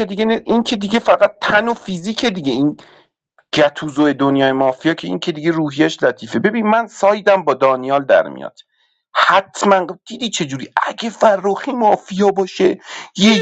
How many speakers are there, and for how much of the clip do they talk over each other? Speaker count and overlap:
1, no overlap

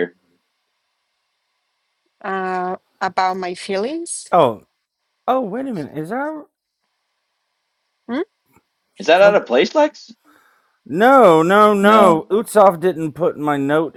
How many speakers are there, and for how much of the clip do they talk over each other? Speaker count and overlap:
3, about 3%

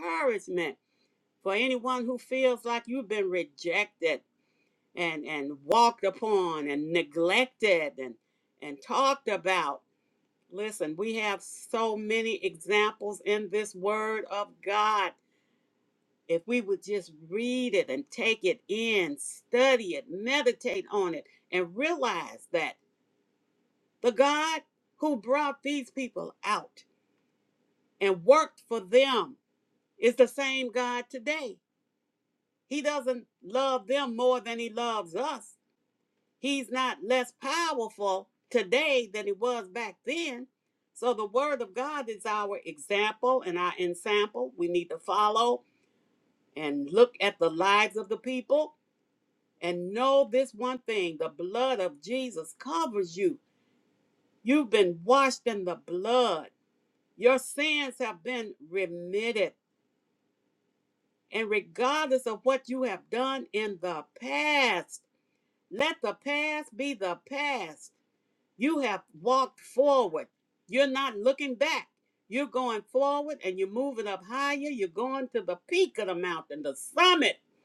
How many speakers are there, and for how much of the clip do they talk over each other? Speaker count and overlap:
1, no overlap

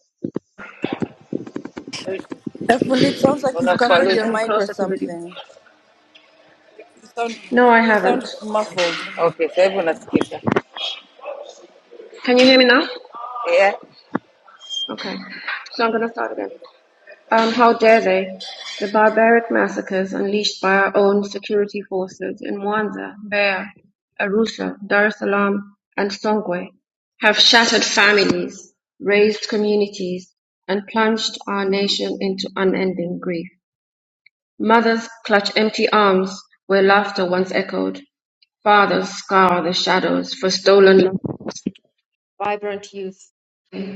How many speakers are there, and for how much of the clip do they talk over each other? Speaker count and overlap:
3, about 5%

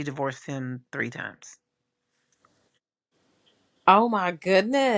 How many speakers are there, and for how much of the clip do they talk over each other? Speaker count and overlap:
2, no overlap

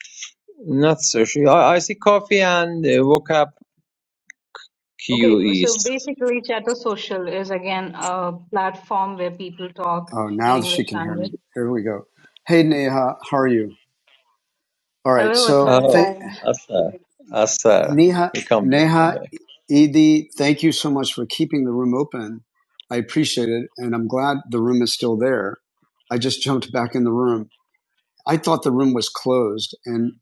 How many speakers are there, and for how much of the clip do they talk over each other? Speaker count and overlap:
3, about 10%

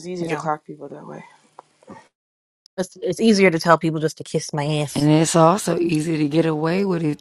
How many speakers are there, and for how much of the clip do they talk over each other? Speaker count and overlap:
3, about 4%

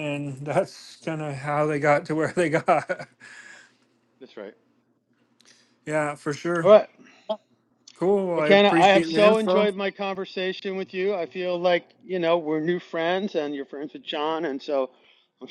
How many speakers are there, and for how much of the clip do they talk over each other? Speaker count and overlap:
2, about 9%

